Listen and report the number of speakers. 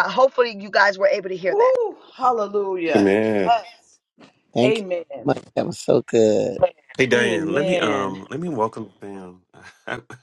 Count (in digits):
4